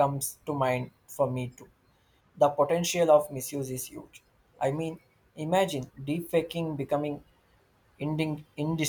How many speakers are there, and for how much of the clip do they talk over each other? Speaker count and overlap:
one, no overlap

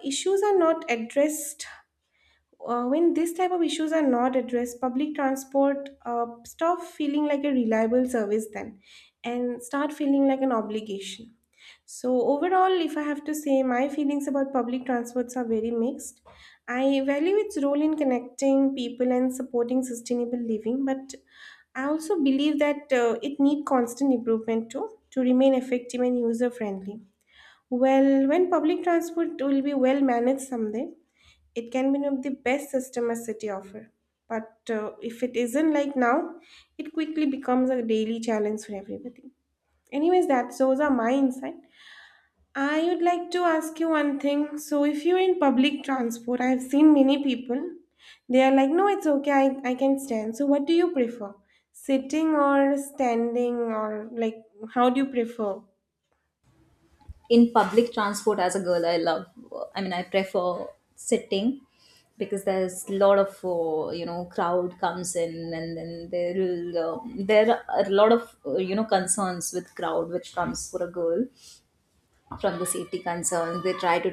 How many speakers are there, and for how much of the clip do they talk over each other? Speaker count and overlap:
two, no overlap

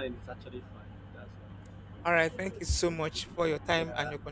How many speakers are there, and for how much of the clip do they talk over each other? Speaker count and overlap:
two, about 12%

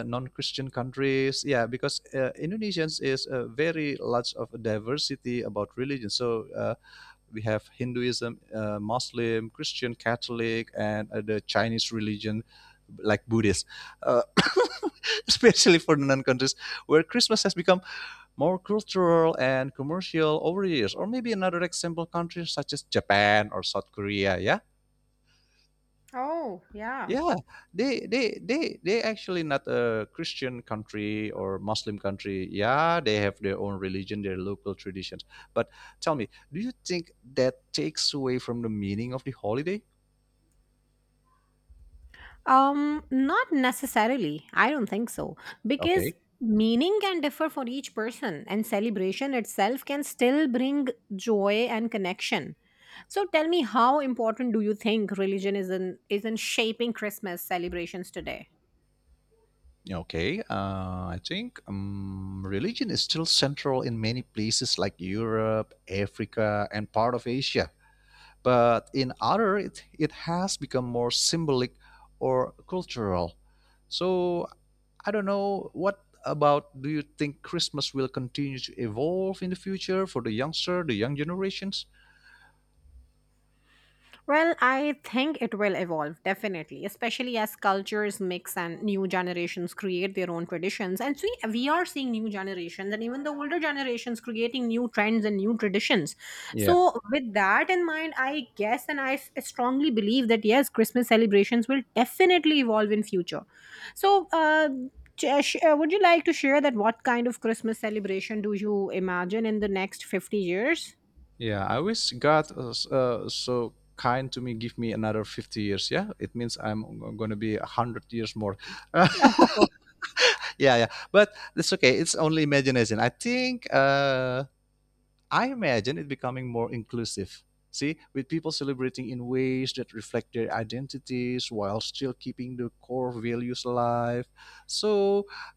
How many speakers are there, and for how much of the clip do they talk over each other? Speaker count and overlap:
two, under 1%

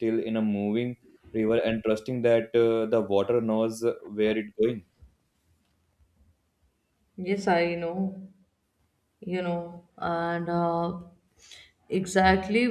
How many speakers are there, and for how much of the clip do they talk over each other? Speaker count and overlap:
two, no overlap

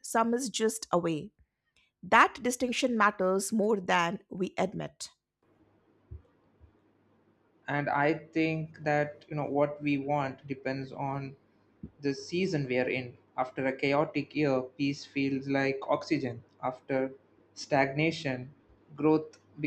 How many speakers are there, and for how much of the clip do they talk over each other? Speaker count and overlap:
two, no overlap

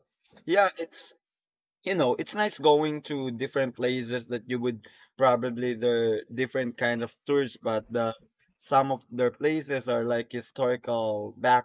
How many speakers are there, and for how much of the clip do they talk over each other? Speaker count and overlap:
one, no overlap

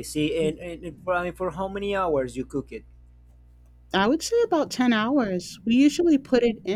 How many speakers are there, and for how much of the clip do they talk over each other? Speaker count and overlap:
two, no overlap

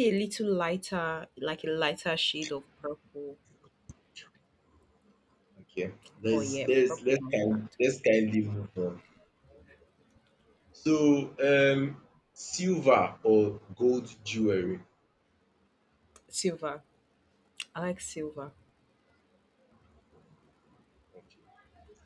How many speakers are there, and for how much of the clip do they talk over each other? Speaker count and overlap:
two, about 6%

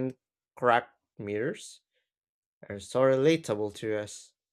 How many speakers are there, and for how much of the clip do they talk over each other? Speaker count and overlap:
one, no overlap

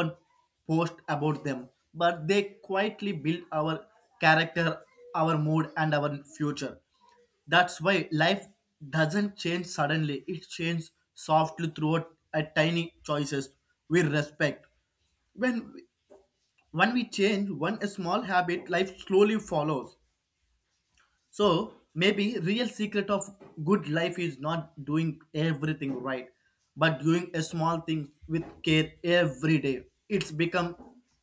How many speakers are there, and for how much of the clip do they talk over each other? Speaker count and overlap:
one, no overlap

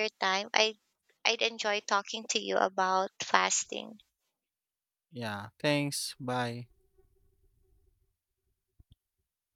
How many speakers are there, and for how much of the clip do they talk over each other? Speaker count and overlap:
two, no overlap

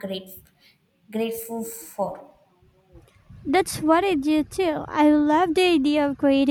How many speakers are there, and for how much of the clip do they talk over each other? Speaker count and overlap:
two, no overlap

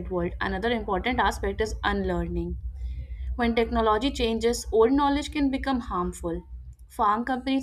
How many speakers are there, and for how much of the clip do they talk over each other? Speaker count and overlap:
one, no overlap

